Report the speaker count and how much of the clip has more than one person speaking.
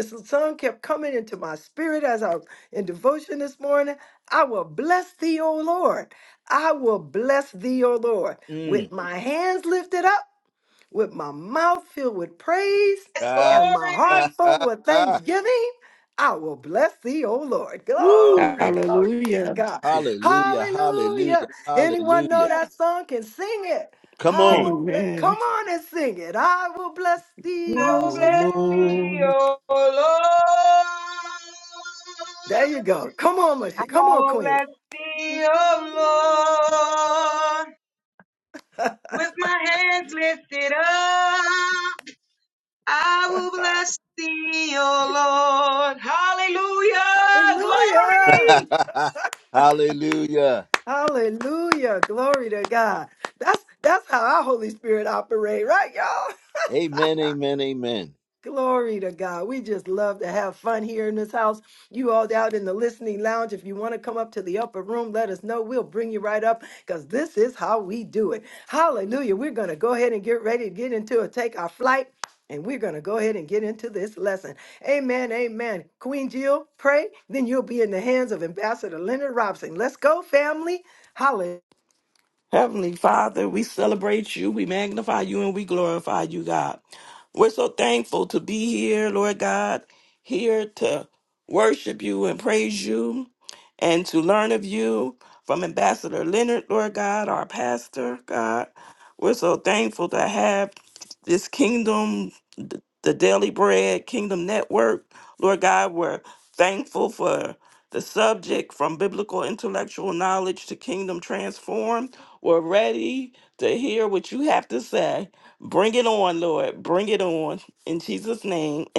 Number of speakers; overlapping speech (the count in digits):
4, about 8%